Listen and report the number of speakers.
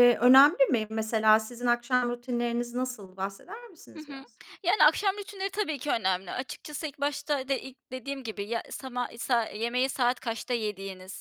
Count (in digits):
2